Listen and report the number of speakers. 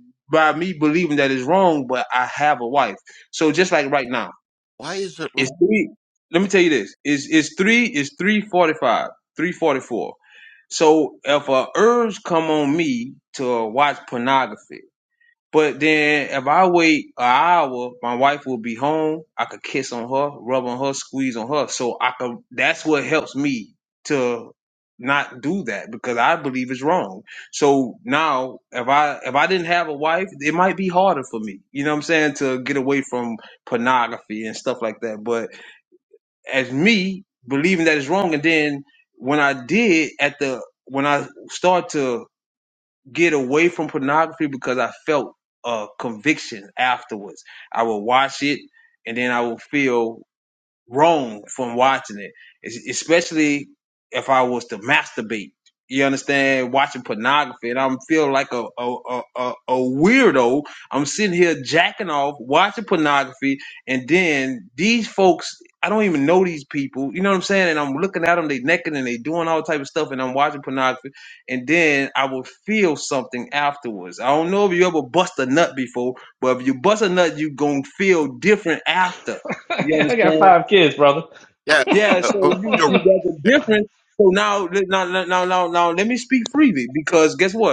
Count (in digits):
3